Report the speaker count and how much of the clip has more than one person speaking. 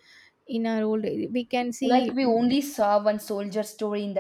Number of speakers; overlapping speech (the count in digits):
2, about 17%